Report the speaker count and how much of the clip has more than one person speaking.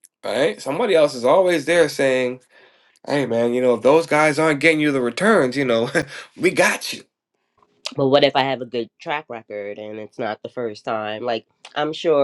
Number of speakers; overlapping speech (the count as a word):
two, no overlap